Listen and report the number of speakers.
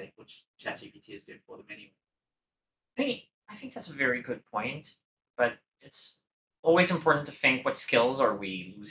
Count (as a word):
two